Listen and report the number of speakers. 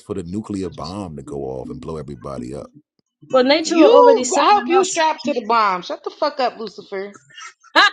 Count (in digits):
3